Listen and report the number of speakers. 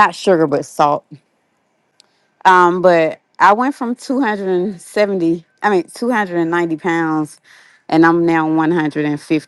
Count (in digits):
1